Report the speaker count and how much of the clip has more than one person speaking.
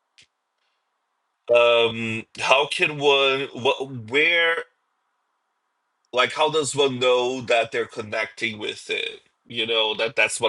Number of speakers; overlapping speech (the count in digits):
1, no overlap